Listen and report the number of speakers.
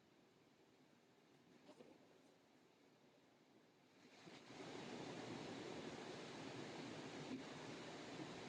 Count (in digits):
0